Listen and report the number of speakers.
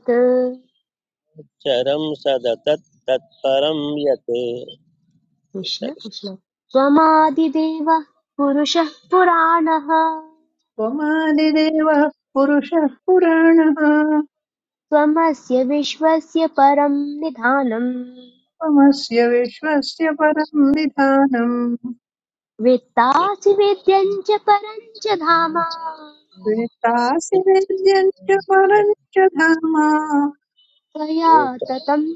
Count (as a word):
three